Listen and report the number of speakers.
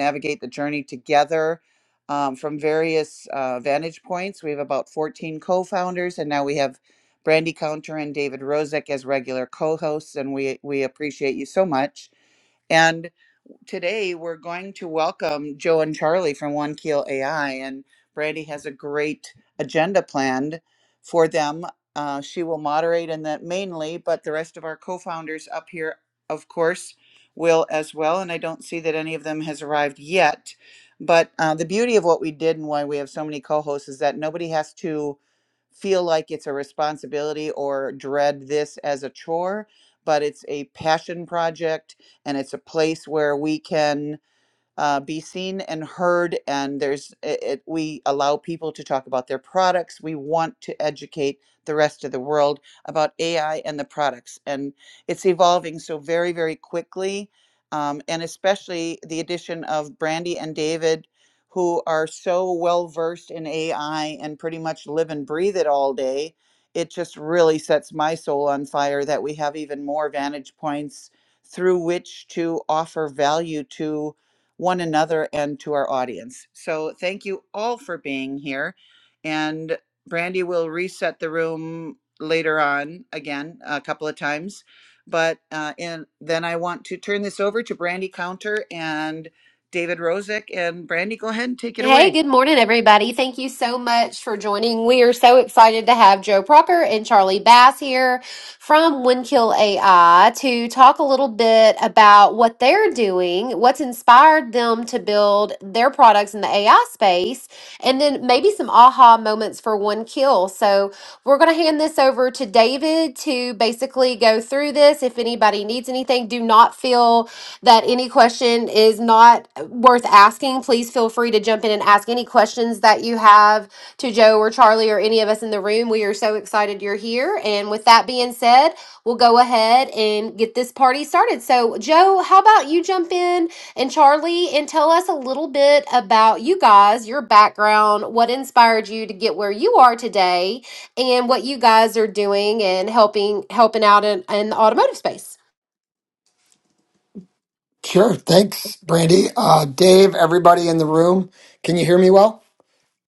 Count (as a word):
three